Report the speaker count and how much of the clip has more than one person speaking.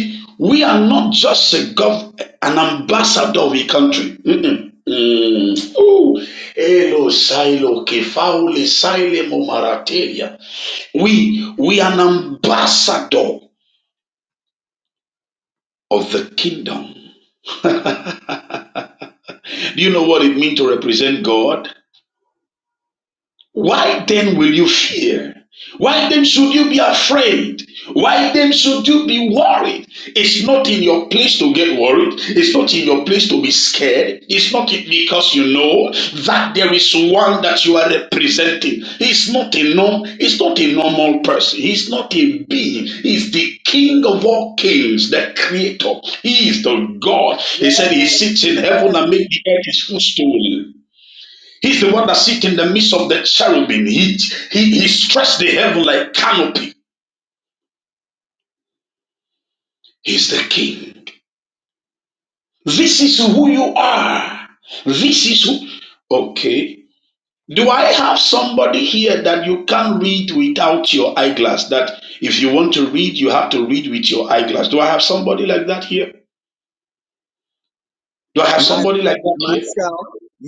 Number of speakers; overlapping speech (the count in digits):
2, about 2%